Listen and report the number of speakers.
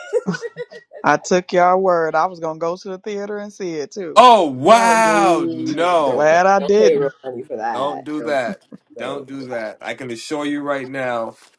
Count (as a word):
three